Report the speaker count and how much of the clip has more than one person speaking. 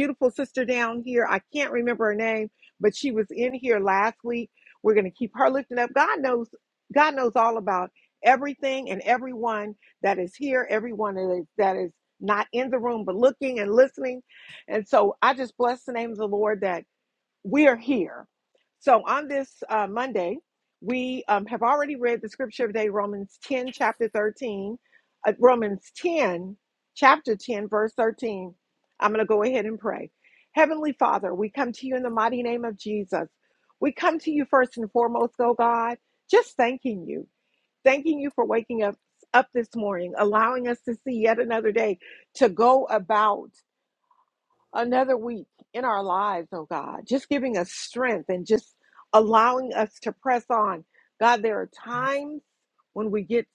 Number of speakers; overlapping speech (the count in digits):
1, no overlap